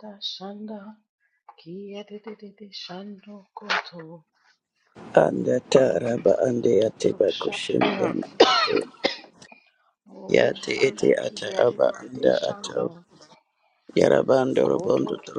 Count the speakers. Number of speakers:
two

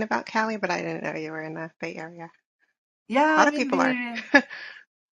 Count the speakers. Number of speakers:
two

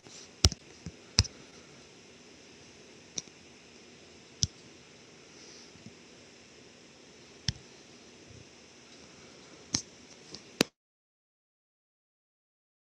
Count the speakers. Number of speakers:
zero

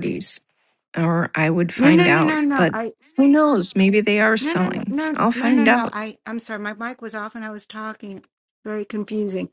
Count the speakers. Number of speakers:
two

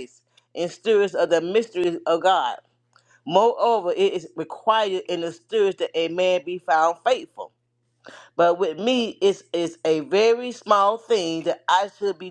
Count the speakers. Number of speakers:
one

